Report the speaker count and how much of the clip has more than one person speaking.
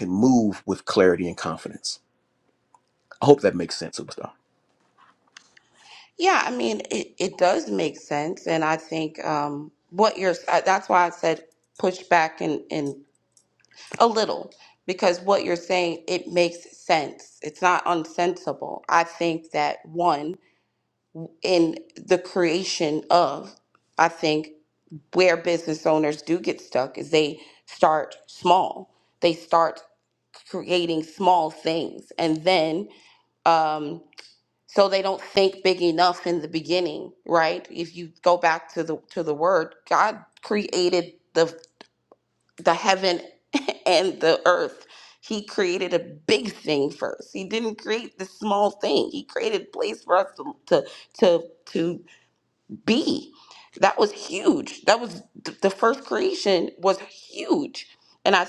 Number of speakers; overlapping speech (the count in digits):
2, no overlap